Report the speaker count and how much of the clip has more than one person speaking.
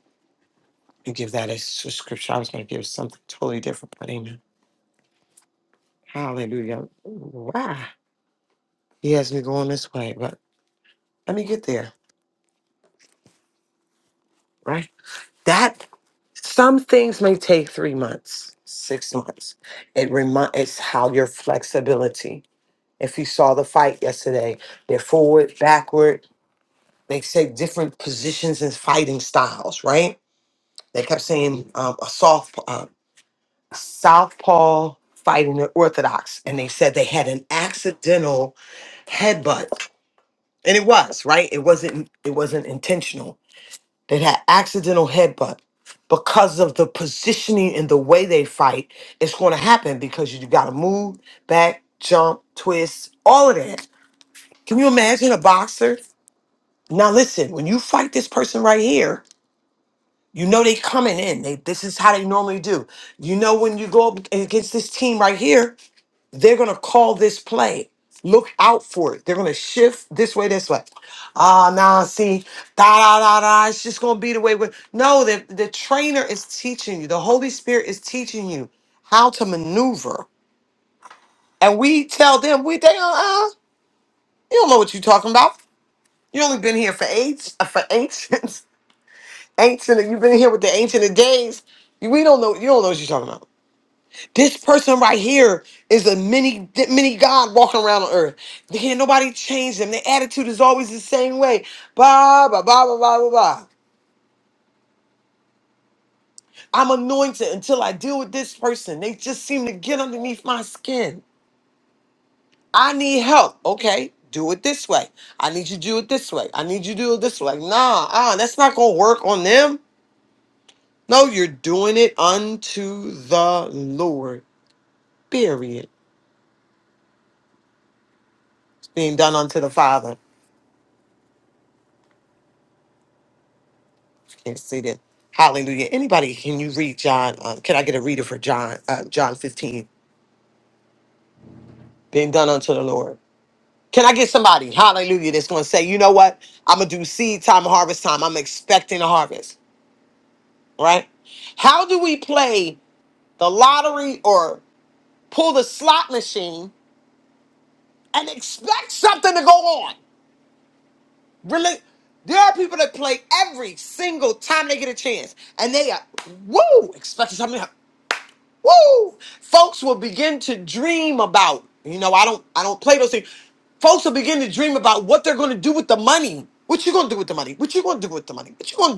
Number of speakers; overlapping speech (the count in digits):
1, no overlap